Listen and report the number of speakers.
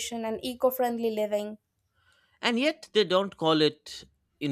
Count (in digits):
2